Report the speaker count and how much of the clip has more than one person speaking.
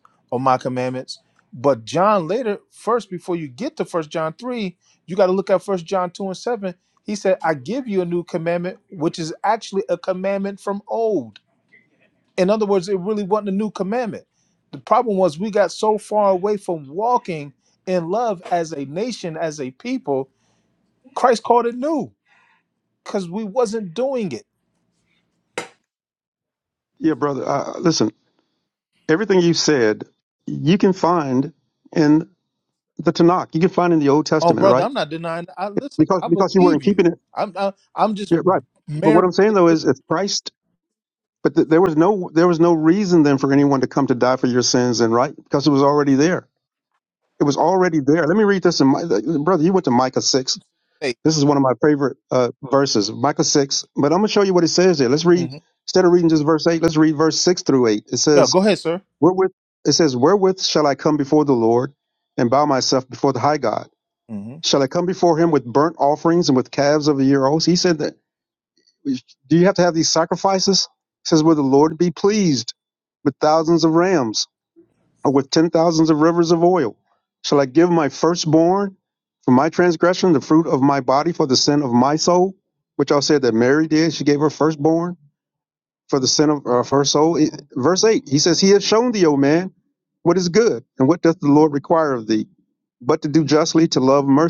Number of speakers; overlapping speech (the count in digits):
2, about 2%